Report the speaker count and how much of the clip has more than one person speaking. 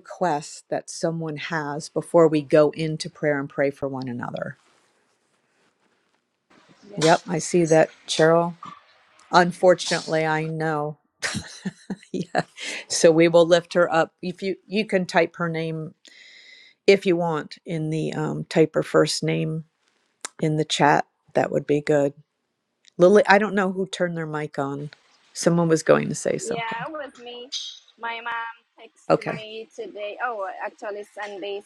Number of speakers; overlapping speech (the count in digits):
2, about 2%